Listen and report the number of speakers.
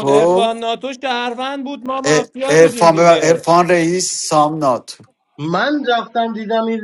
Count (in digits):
3